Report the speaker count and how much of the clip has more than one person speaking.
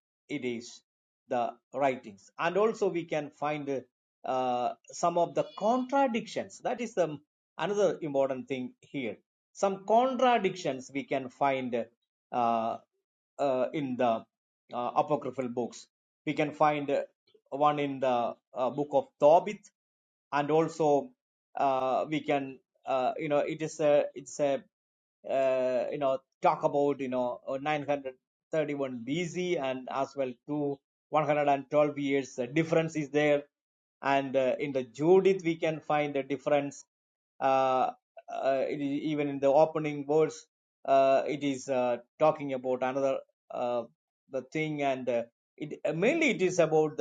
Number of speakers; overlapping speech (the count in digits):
1, no overlap